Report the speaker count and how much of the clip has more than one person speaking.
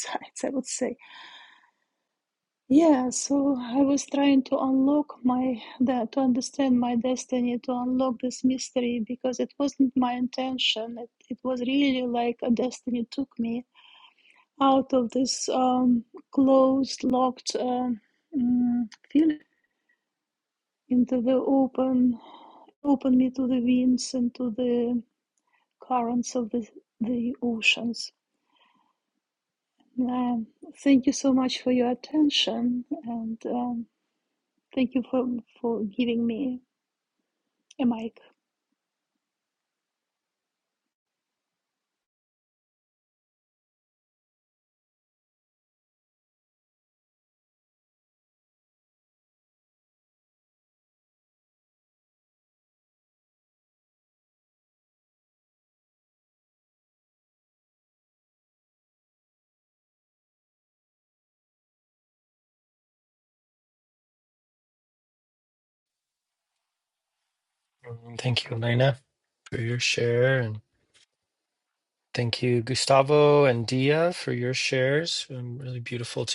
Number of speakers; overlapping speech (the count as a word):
two, no overlap